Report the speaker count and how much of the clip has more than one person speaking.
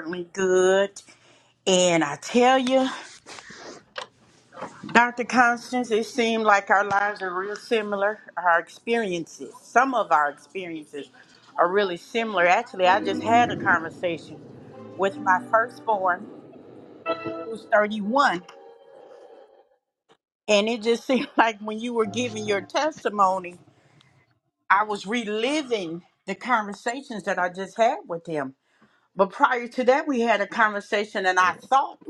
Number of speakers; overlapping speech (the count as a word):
one, no overlap